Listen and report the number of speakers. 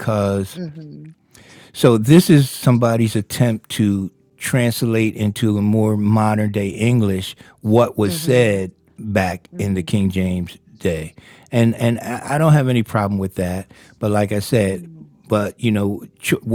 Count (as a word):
two